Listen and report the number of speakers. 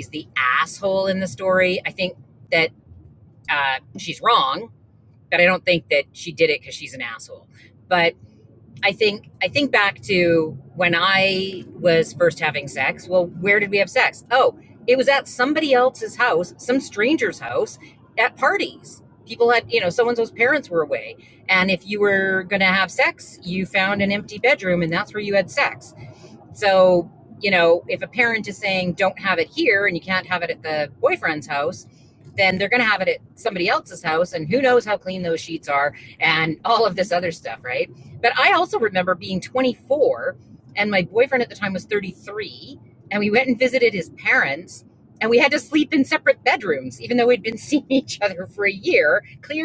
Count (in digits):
1